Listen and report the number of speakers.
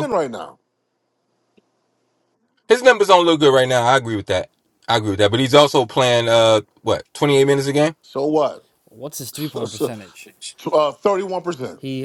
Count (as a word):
three